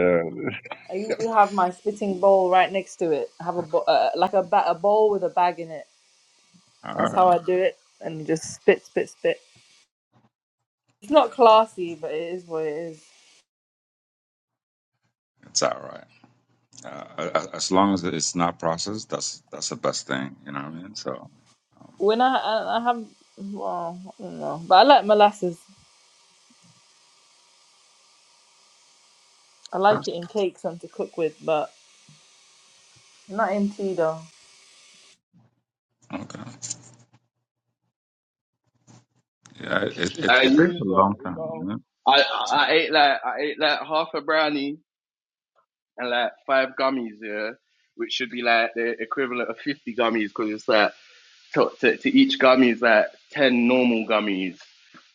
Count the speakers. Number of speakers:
3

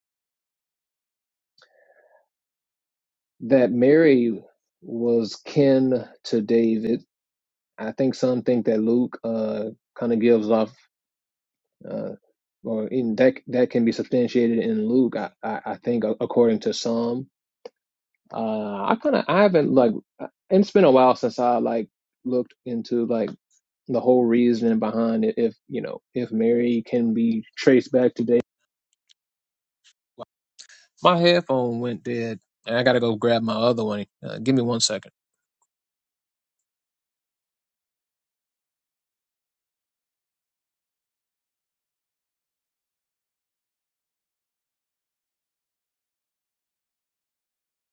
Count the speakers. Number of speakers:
1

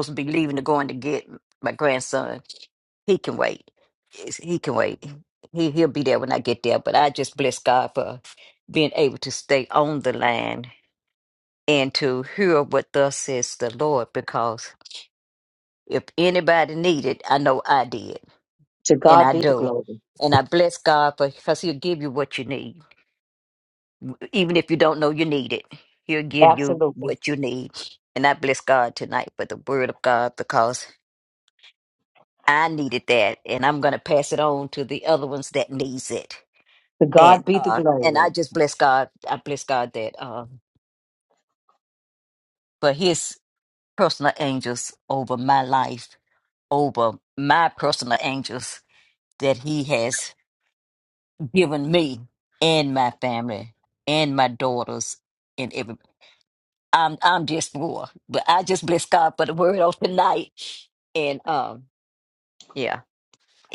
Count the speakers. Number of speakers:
2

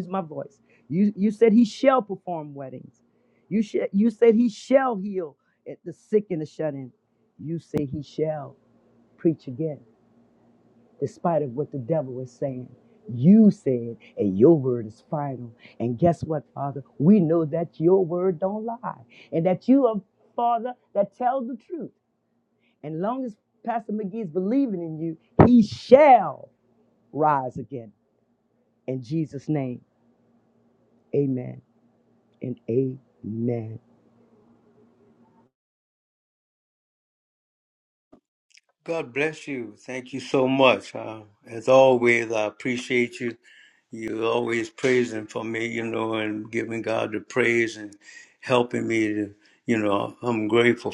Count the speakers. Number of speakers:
2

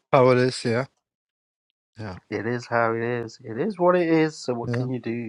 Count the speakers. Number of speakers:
2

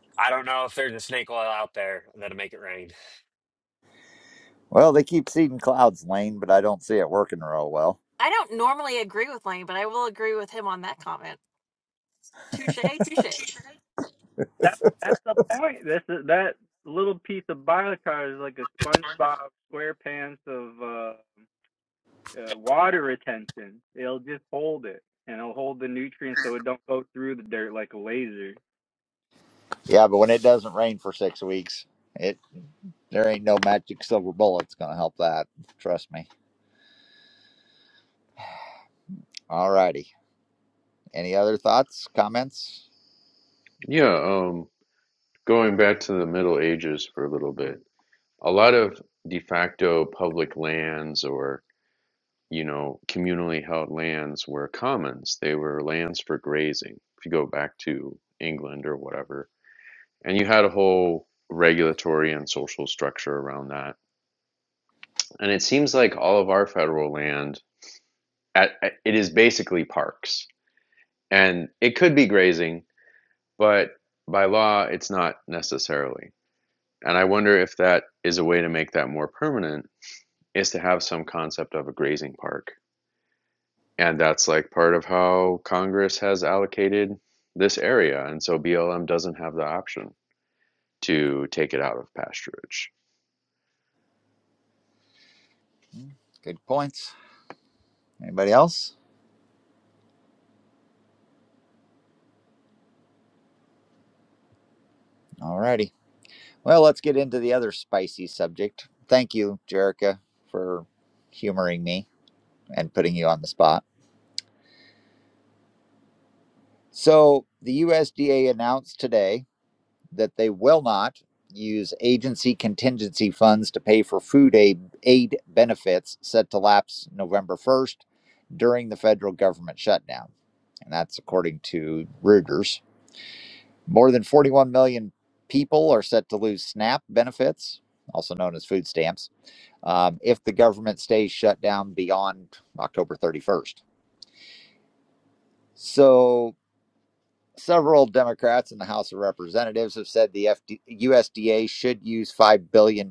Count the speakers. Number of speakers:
5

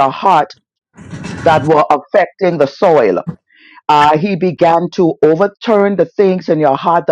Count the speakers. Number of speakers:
1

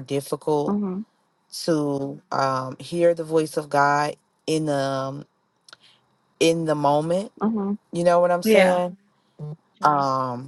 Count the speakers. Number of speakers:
2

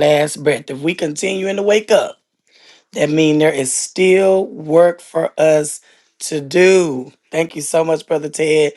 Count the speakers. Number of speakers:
1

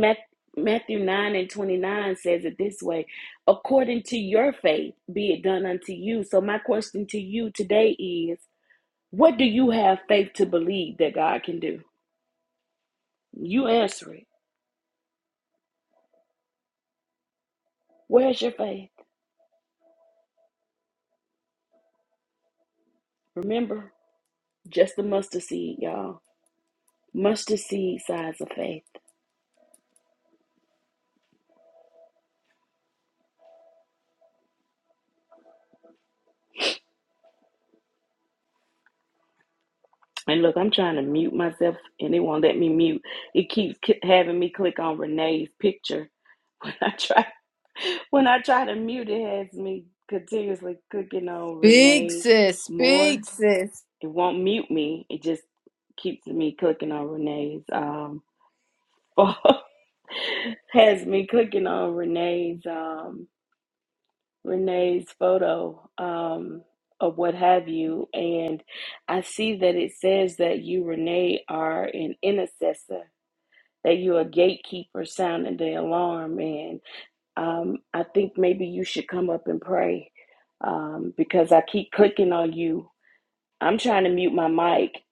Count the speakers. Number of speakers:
2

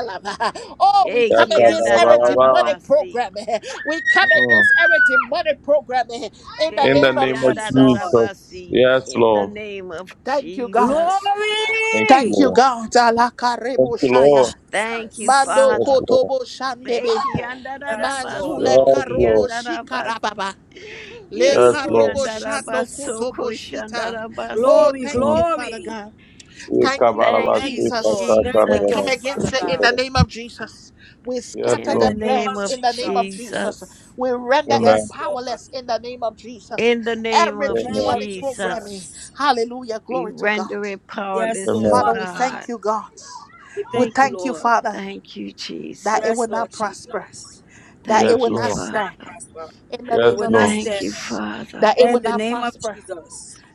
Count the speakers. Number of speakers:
4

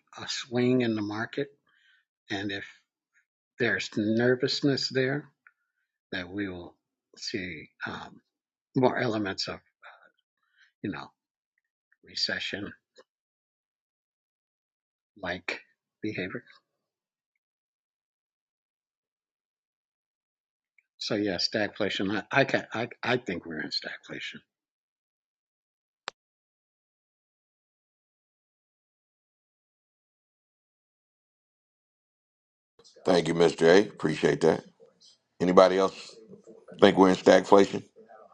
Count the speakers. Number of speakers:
2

